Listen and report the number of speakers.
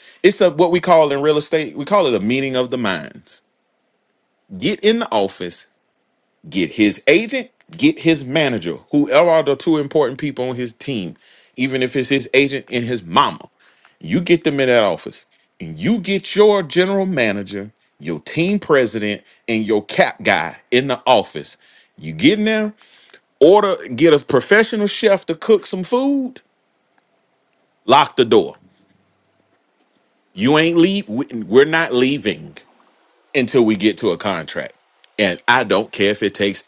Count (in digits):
1